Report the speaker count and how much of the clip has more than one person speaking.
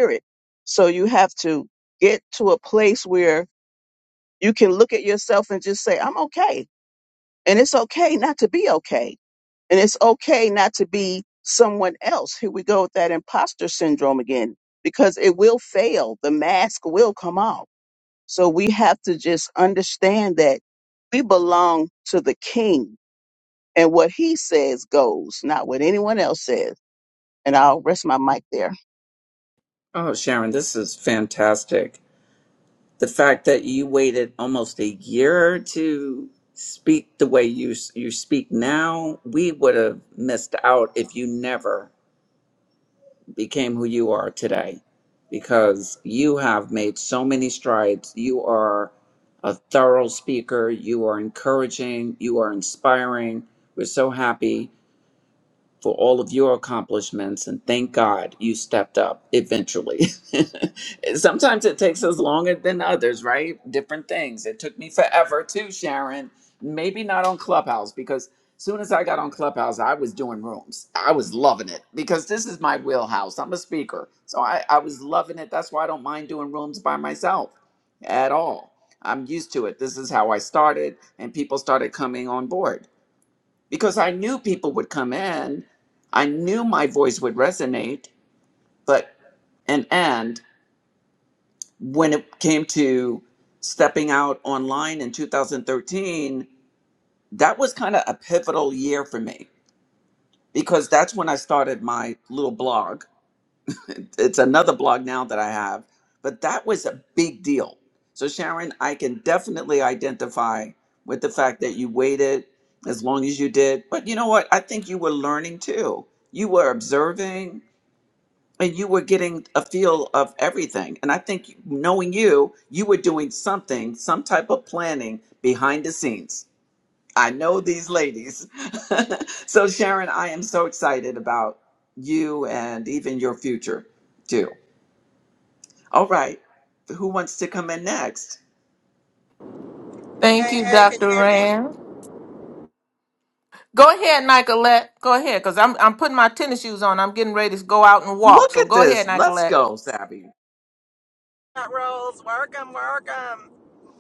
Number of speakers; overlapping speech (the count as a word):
four, about 2%